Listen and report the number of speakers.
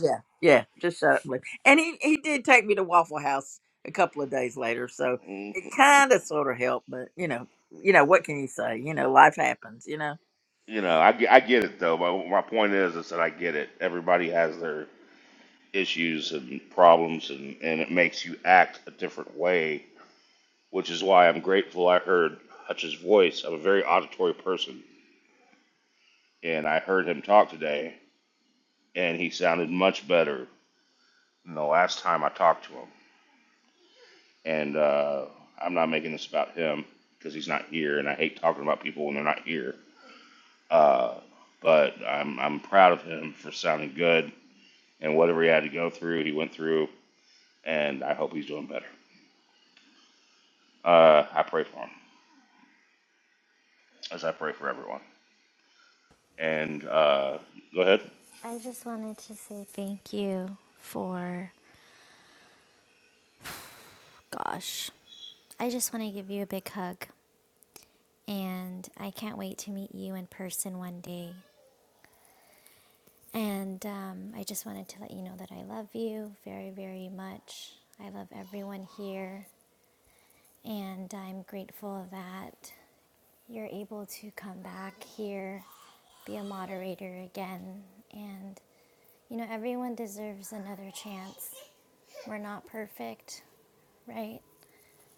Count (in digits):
3